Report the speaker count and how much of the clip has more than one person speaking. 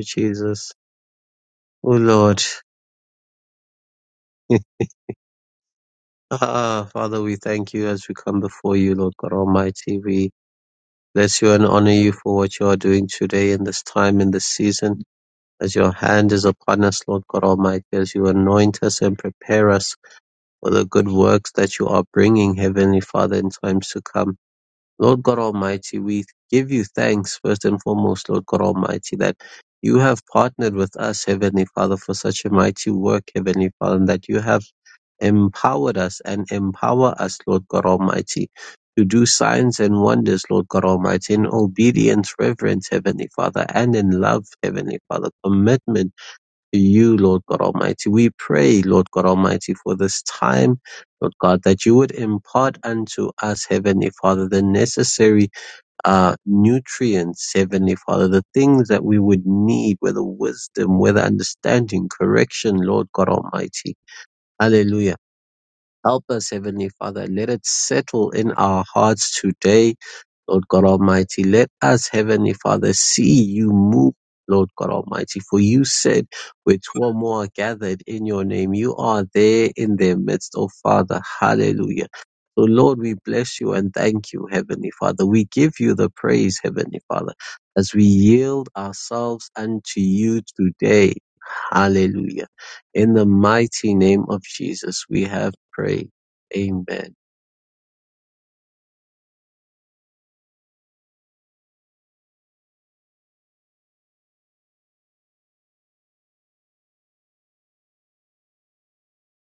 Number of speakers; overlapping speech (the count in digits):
1, no overlap